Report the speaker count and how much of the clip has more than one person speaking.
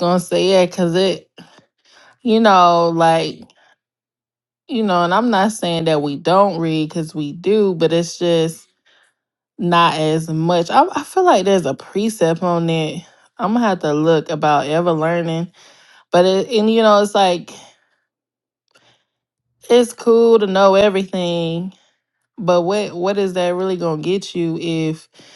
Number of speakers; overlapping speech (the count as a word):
one, no overlap